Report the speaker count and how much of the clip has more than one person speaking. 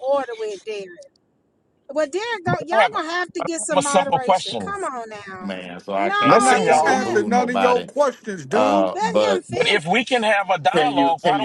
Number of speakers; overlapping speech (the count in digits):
4, about 45%